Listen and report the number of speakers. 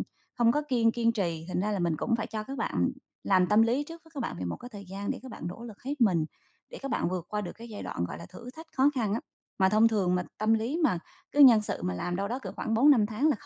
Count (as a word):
one